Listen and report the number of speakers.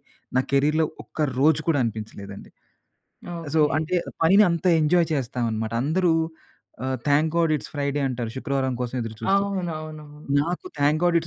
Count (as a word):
two